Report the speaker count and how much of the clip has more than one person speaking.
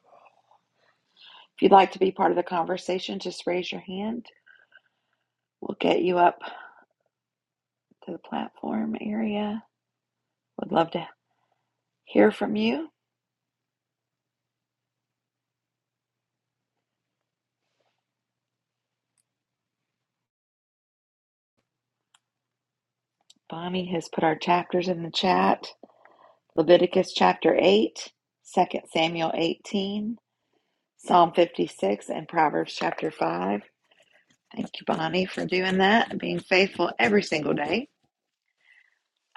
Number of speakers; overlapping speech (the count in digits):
1, no overlap